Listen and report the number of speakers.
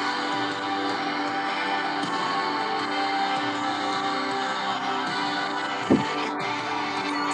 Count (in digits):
0